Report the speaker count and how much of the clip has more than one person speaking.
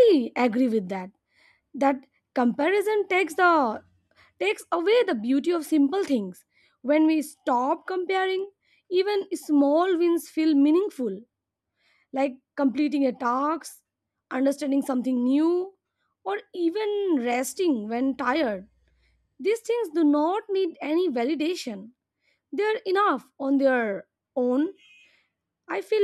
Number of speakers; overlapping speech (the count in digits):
1, no overlap